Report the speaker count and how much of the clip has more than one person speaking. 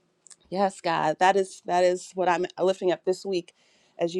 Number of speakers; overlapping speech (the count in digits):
1, no overlap